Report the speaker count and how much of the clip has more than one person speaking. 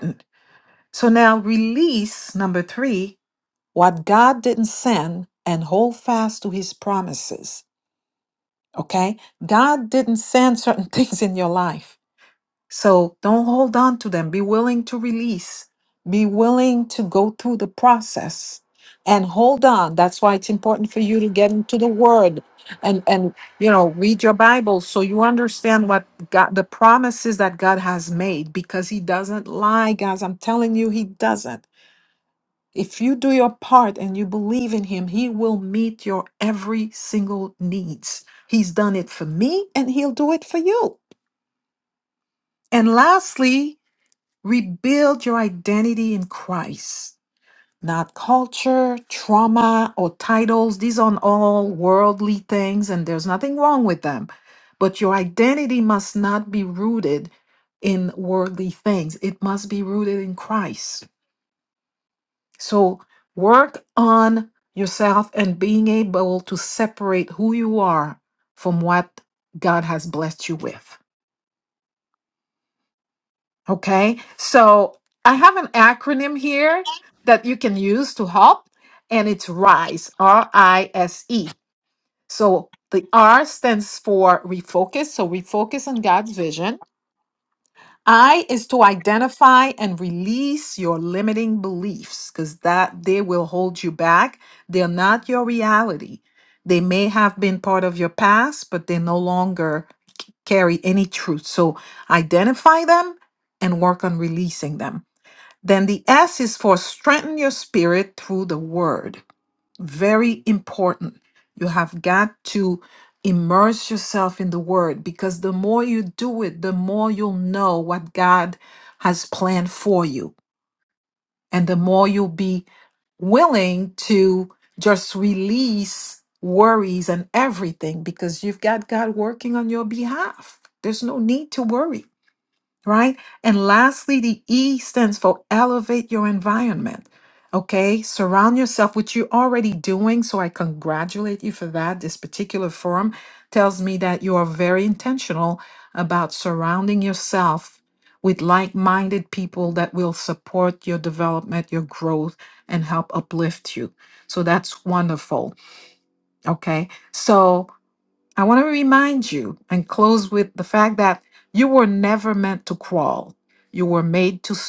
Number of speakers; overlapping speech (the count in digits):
1, no overlap